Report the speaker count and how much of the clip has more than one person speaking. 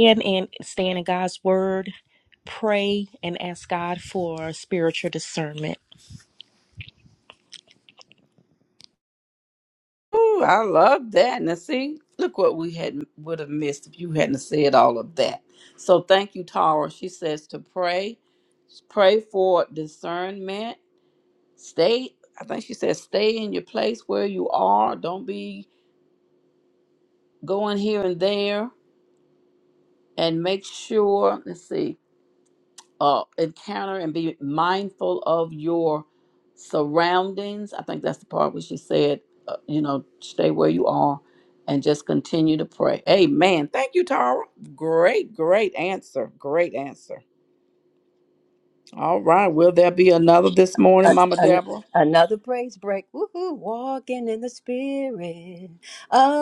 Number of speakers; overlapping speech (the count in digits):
3, about 1%